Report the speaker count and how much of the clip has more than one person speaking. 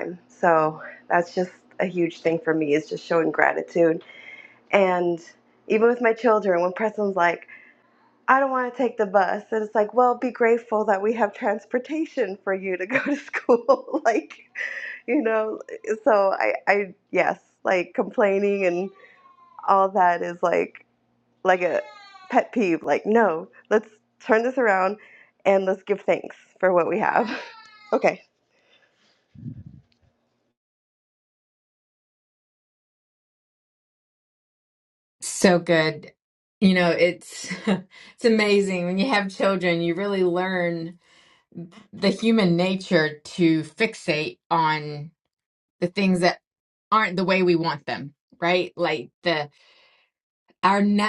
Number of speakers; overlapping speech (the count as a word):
two, no overlap